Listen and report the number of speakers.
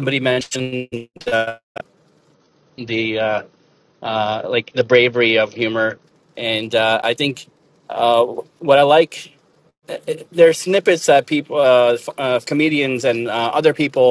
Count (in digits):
1